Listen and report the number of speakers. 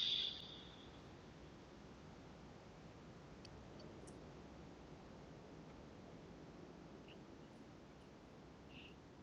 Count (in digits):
0